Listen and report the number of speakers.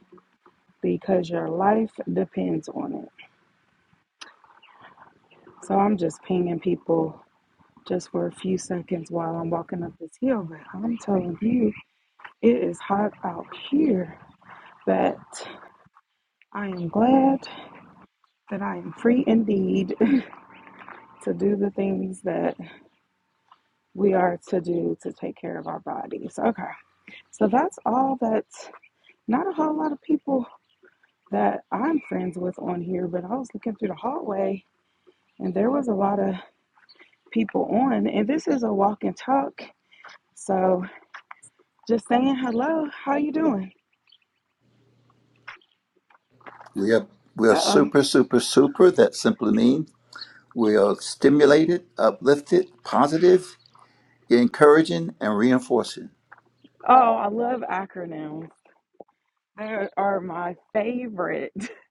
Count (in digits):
2